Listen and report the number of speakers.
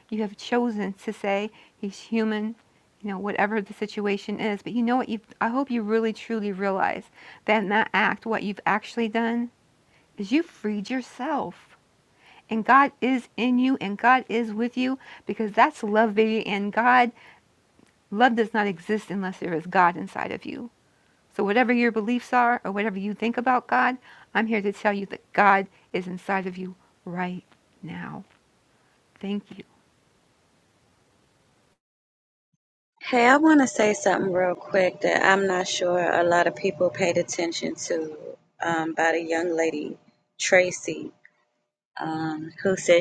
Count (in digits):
2